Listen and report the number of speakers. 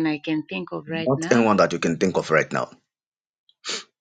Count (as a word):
two